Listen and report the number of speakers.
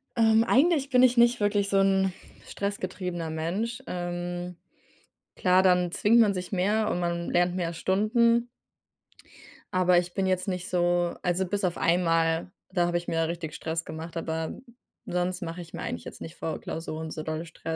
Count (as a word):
one